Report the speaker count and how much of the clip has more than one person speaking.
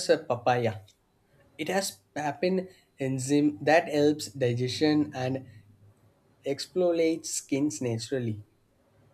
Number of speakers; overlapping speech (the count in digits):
1, no overlap